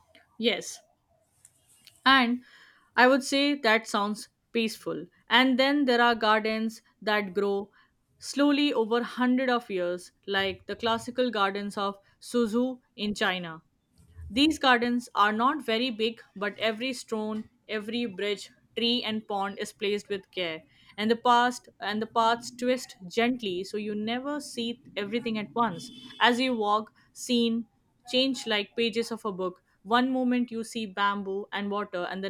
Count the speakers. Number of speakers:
1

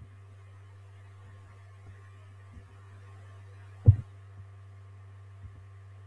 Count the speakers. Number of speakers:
0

